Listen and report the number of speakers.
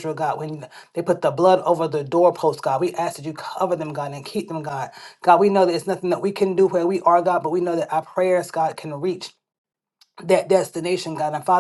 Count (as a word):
one